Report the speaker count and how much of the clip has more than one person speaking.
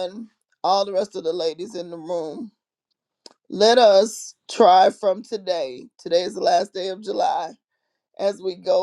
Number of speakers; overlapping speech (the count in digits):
1, no overlap